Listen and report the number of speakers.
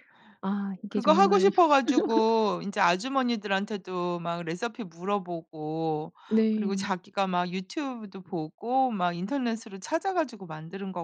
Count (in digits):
2